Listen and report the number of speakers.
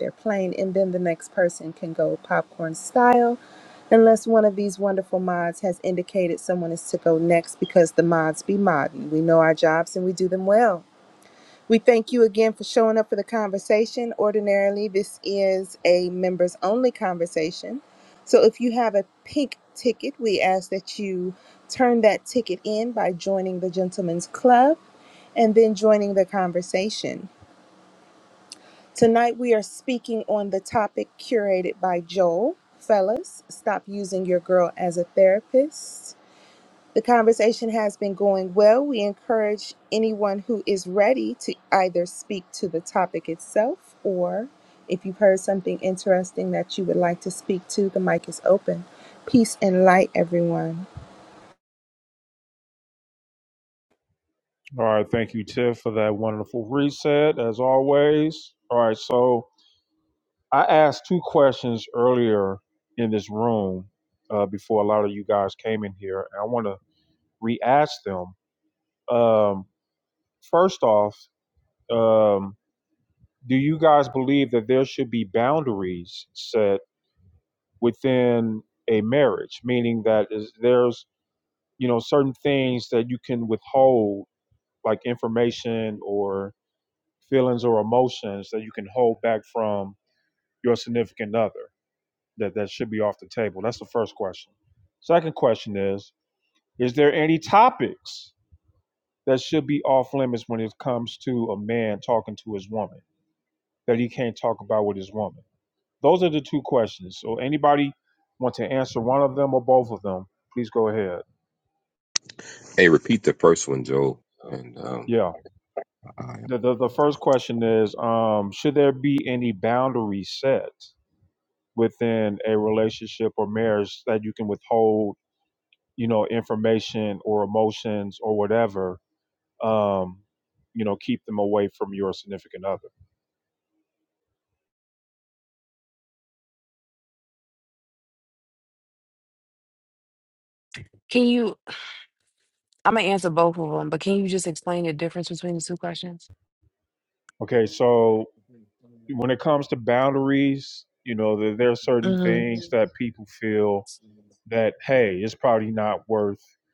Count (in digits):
4